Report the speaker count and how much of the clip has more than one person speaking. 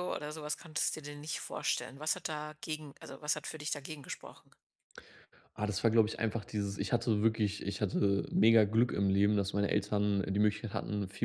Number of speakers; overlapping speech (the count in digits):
2, no overlap